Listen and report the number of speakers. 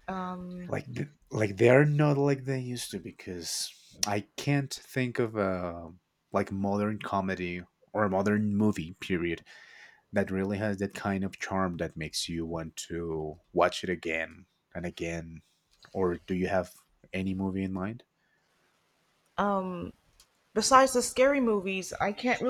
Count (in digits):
2